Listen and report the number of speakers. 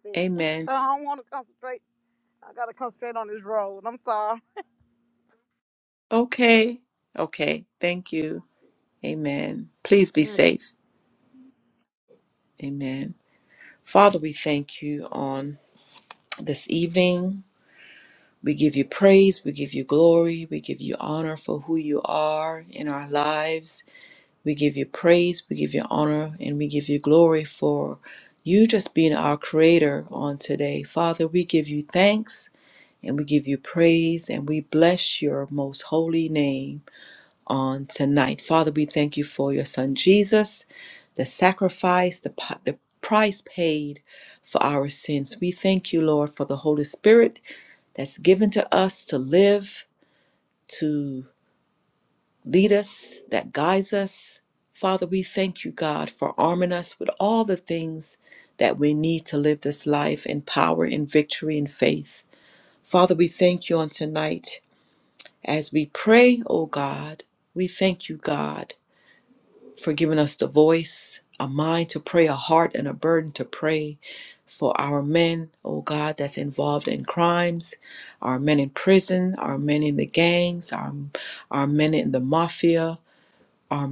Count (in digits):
2